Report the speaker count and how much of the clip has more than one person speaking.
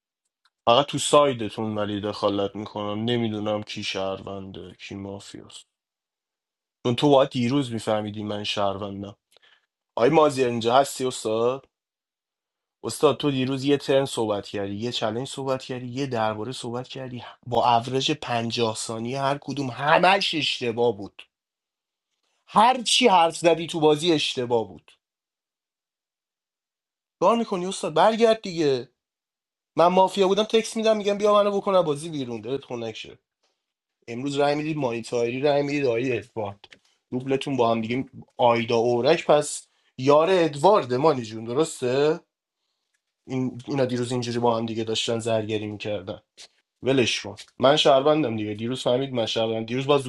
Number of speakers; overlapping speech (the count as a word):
one, no overlap